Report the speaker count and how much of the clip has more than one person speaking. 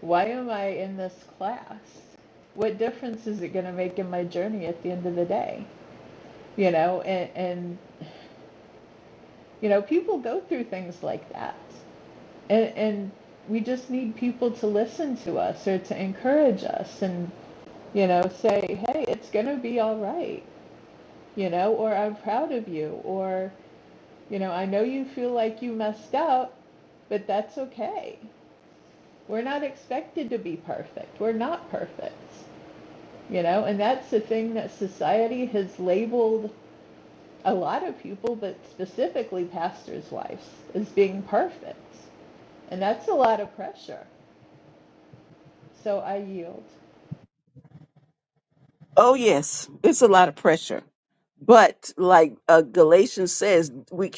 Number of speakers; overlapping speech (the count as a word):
two, no overlap